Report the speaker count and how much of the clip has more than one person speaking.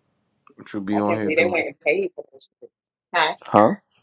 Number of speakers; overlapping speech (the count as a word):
two, about 17%